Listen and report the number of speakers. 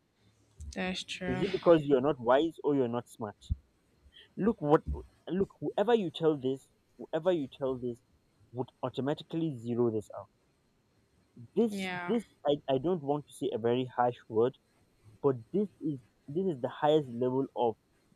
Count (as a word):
two